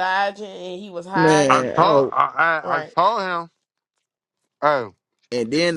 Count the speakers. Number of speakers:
3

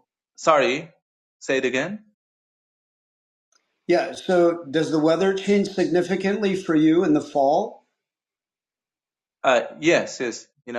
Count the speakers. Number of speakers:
2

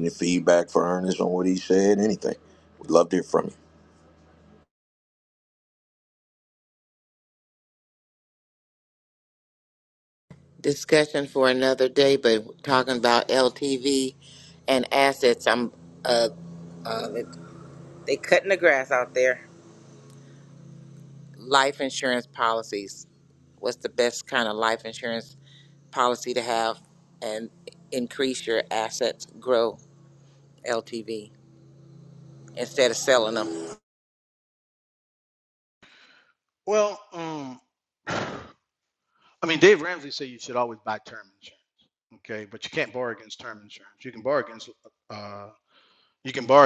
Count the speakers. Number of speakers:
3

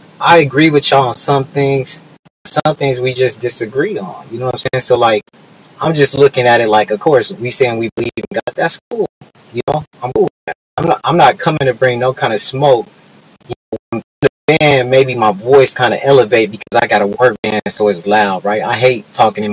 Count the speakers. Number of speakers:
1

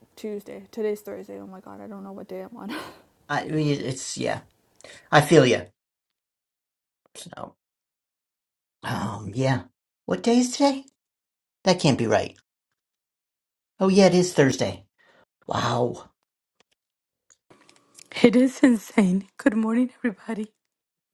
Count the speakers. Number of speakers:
3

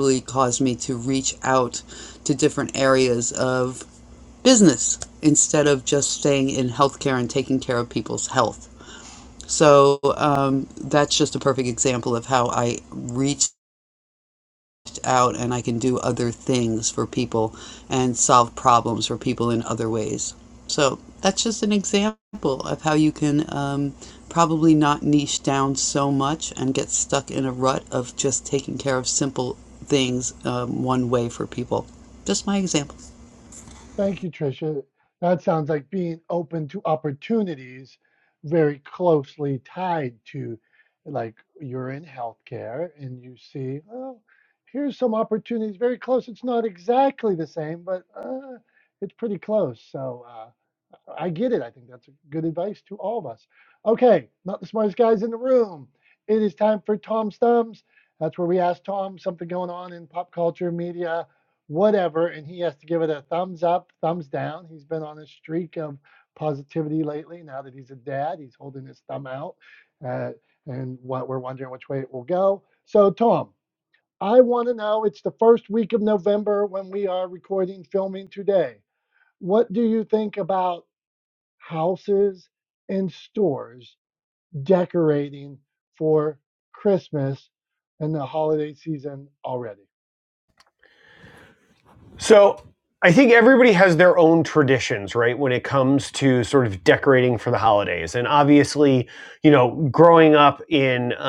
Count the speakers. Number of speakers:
3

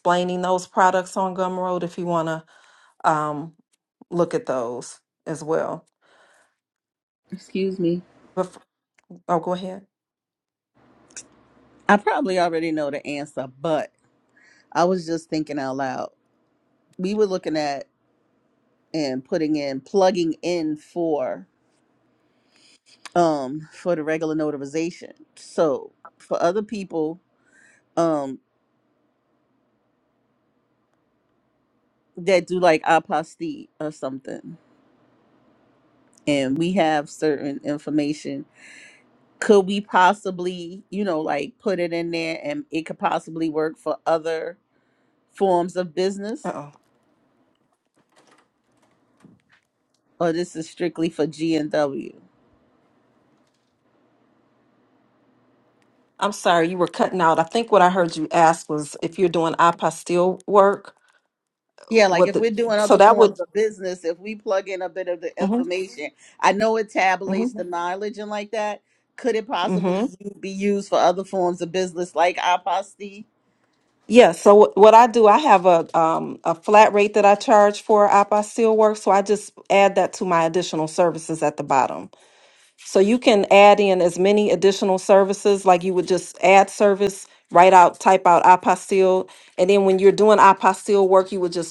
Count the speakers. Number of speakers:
2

